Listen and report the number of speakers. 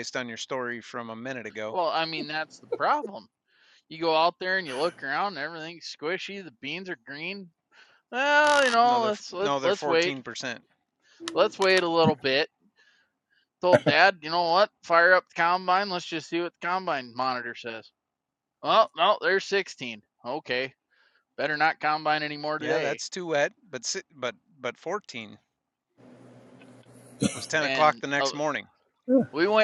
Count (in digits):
2